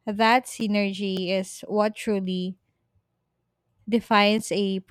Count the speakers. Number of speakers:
1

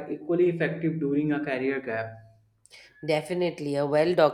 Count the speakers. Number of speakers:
2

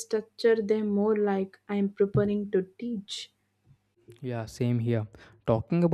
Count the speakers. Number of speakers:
2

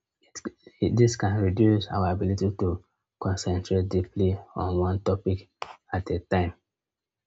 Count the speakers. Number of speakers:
1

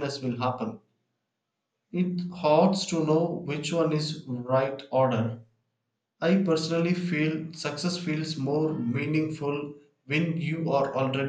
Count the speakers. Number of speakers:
1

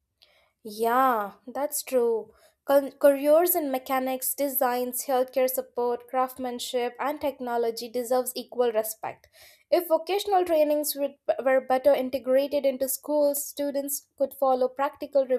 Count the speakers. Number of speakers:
1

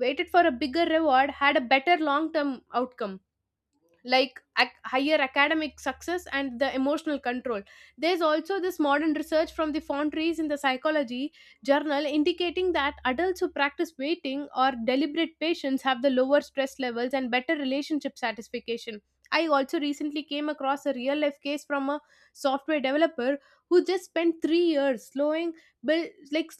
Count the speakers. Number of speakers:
1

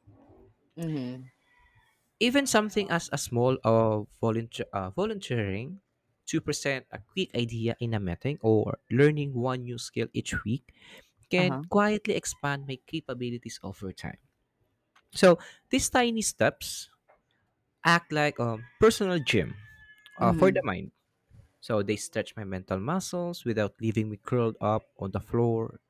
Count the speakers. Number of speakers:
2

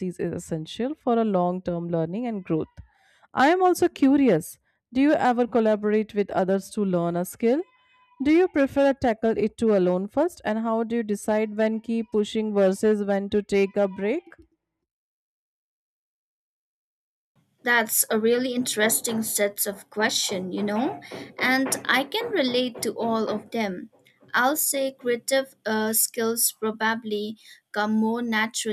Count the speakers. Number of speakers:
2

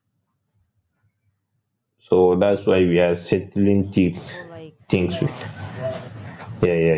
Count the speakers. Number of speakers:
2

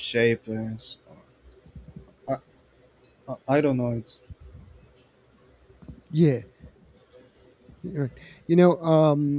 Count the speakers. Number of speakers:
2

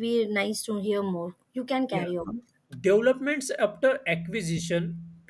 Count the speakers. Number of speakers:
2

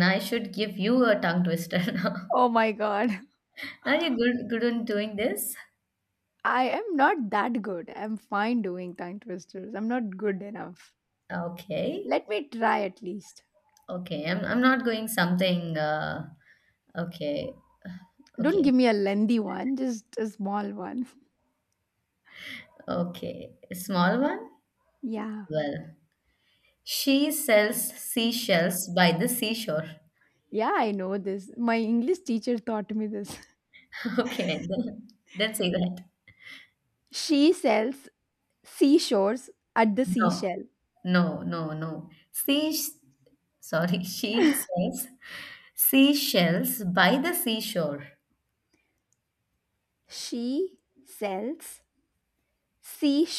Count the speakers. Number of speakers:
2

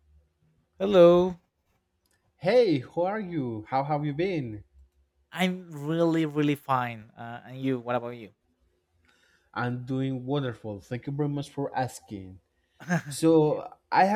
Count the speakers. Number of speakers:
2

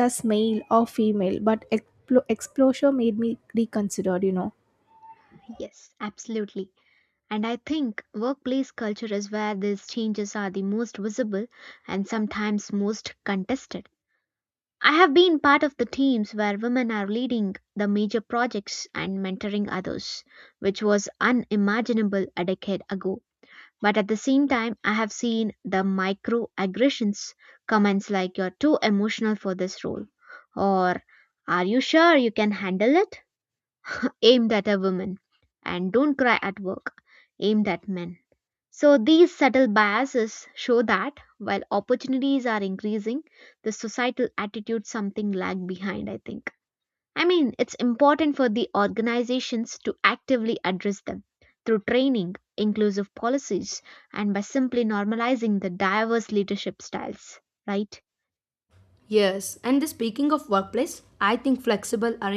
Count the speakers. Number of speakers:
3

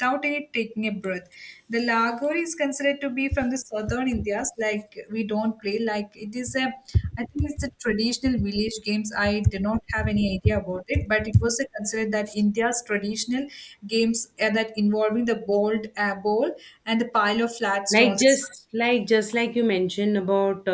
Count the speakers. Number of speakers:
2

